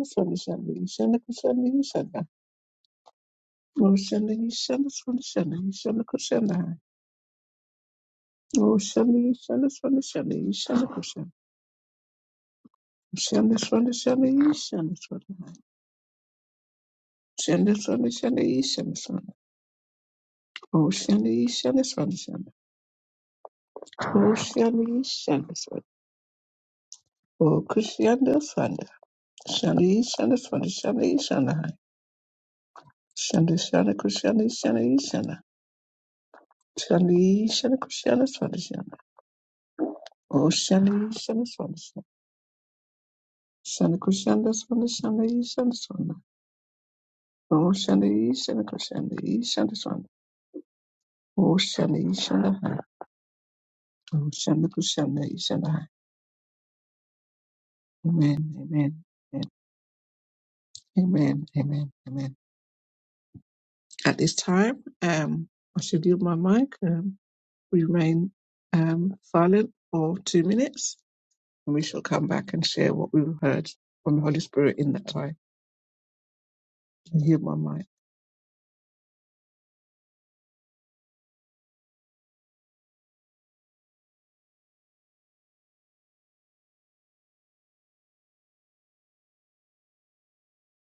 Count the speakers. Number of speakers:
1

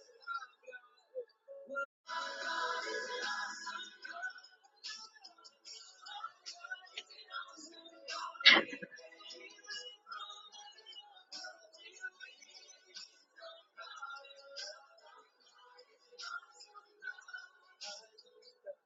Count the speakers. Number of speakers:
0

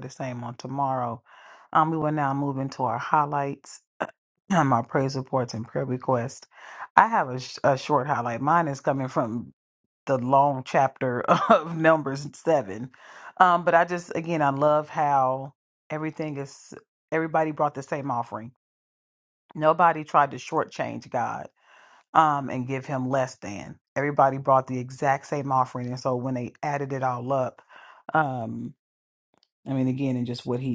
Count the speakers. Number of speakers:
1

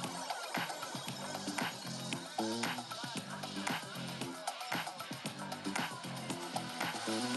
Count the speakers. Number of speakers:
0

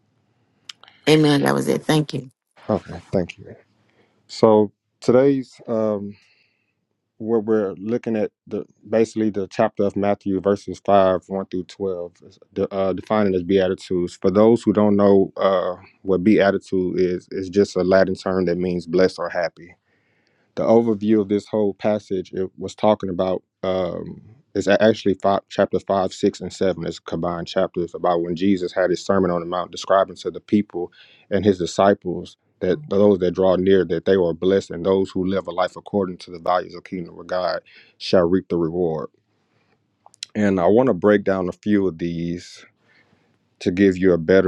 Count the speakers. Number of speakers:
2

